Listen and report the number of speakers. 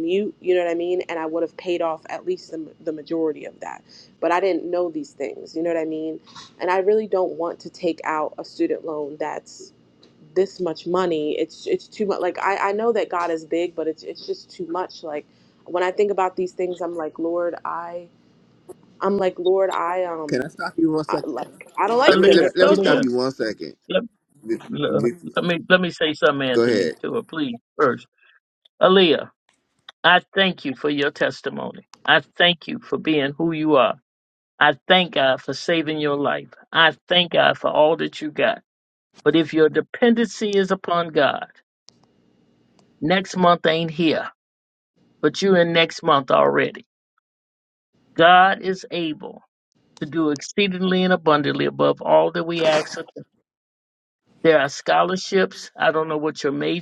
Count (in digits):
3